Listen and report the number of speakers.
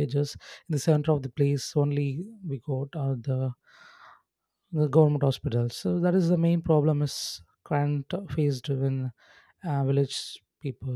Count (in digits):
1